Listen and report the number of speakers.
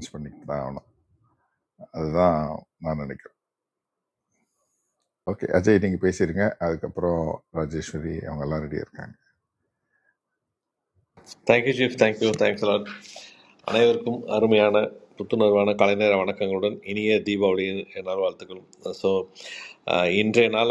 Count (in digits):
2